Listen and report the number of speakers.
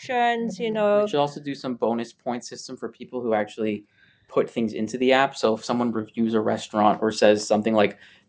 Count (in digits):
2